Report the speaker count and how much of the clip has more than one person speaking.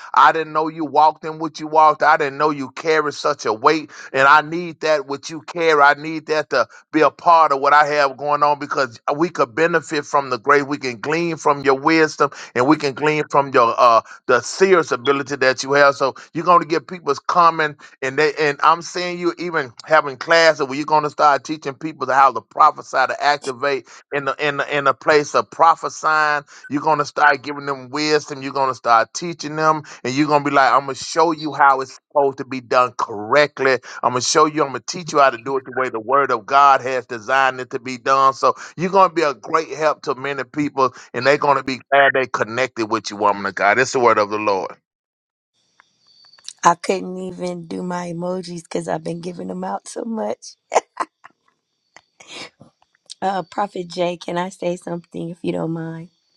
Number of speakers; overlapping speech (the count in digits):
2, no overlap